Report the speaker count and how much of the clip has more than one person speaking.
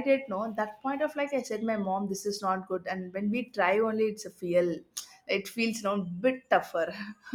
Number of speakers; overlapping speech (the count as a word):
one, no overlap